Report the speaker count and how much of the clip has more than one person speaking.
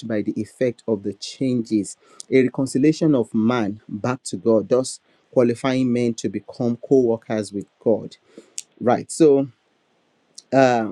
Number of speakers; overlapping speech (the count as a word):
one, no overlap